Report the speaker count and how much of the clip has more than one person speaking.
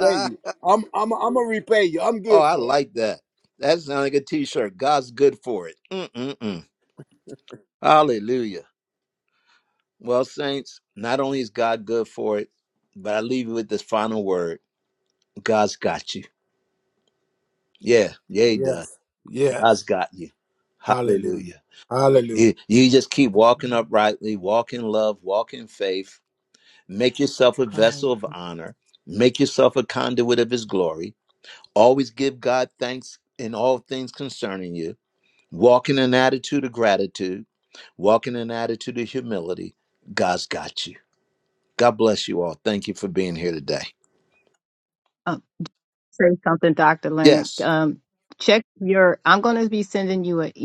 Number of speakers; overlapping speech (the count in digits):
3, about 4%